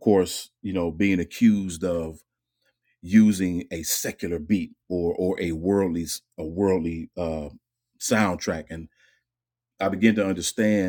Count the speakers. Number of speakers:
1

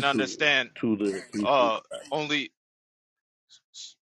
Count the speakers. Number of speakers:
2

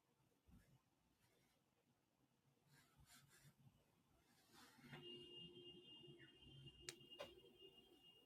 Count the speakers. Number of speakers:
0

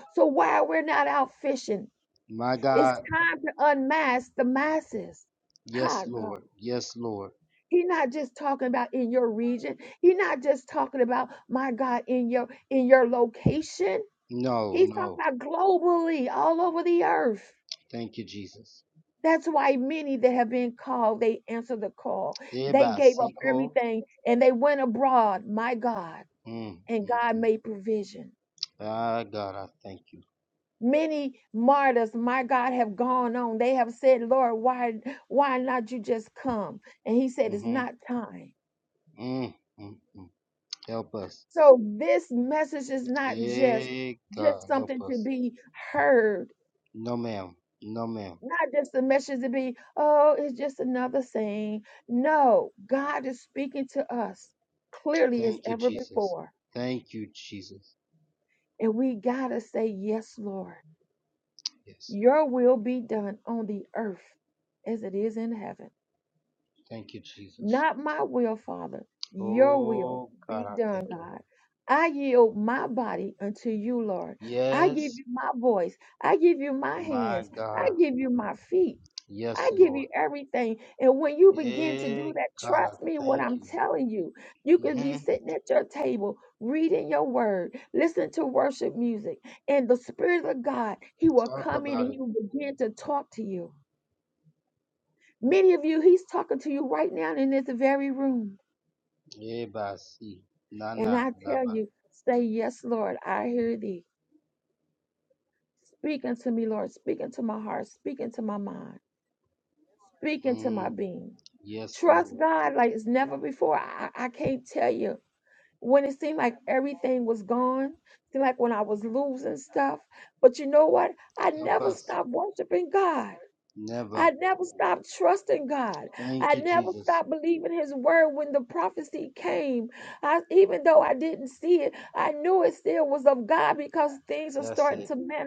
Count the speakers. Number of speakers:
2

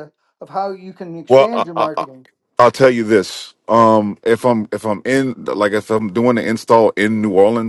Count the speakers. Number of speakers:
2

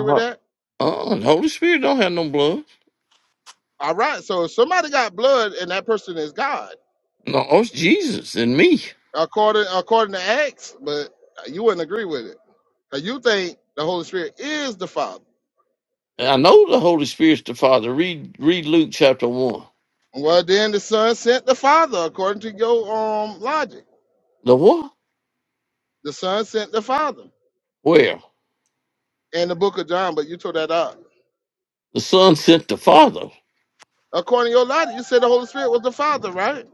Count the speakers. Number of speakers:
2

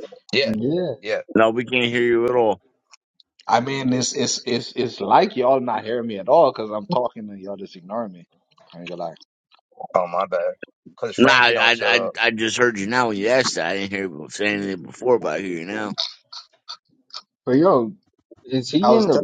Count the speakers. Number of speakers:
4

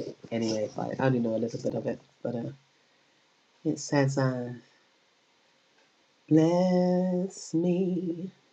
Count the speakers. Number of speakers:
1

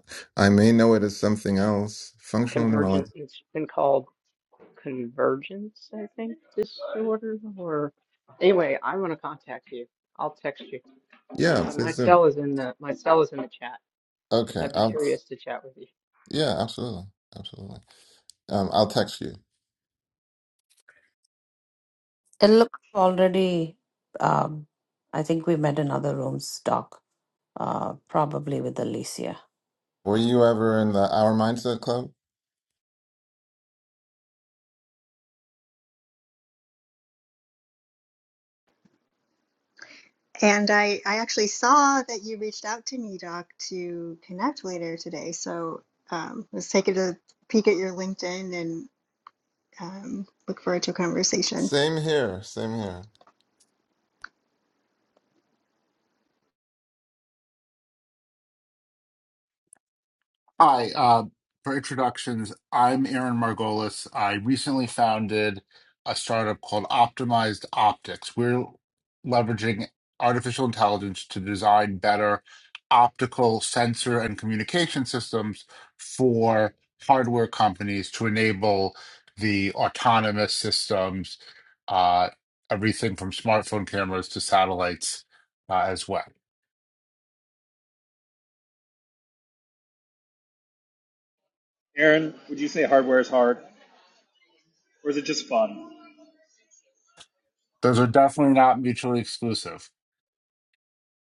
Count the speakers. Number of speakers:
6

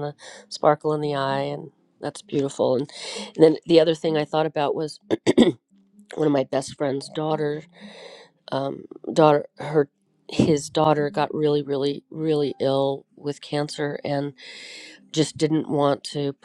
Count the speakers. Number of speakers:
1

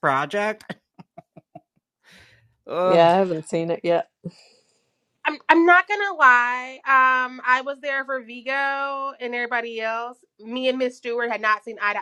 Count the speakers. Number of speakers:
3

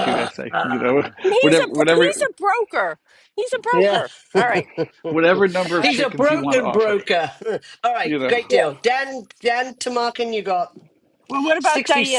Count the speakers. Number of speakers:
3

